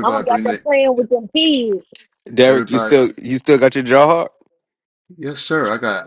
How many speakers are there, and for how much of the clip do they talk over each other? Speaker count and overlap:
3, about 18%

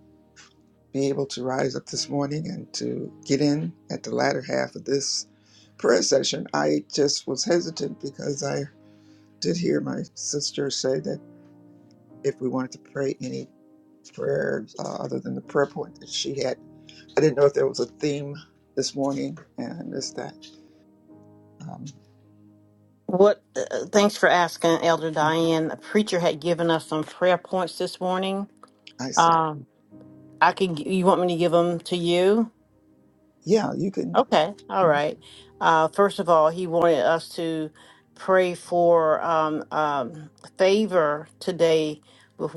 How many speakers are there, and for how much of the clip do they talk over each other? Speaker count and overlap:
2, about 1%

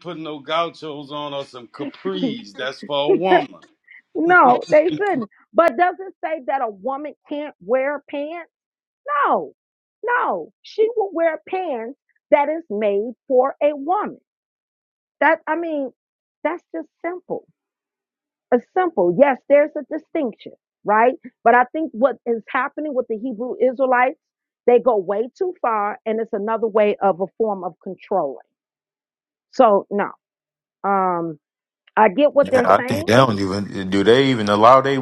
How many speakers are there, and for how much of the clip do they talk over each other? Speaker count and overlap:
3, about 2%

